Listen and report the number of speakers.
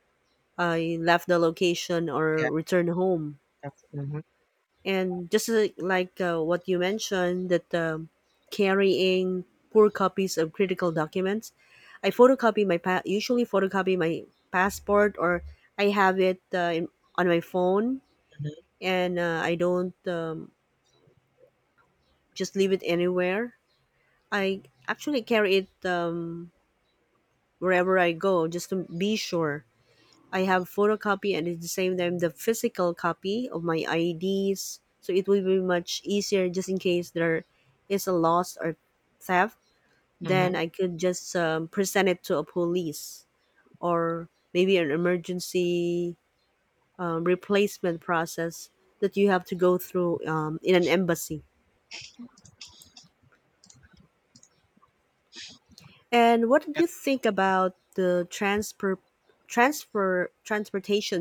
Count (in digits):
2